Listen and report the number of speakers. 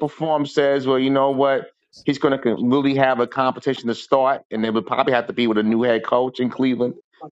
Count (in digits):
1